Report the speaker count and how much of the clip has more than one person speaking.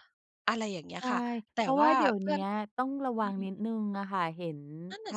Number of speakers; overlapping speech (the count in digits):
2, about 24%